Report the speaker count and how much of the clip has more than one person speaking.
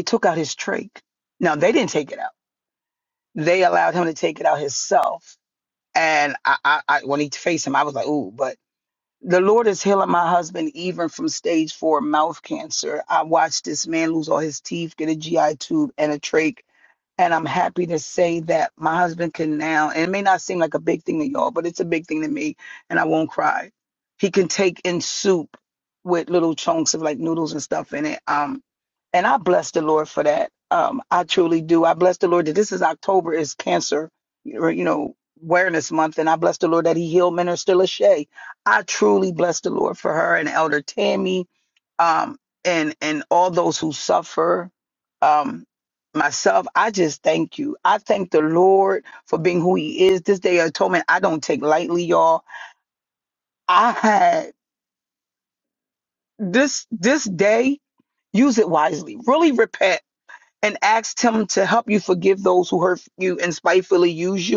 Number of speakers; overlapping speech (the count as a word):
one, no overlap